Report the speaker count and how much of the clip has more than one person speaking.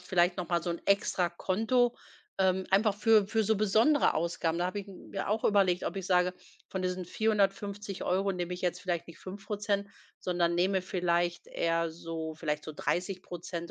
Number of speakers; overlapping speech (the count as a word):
one, no overlap